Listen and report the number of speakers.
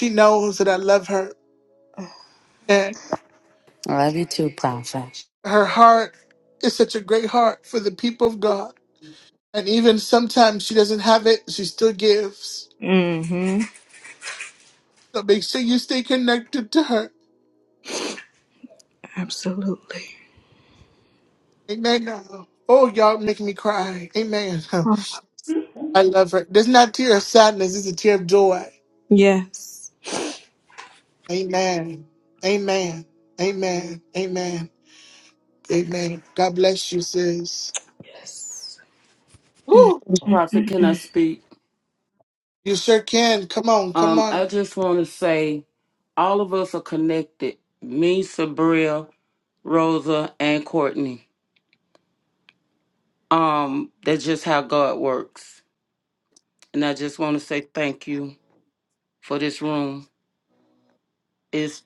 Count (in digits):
4